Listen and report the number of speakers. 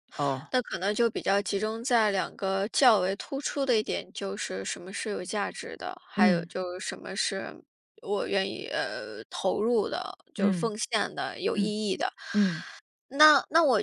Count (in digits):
2